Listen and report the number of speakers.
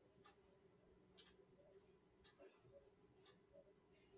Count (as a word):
zero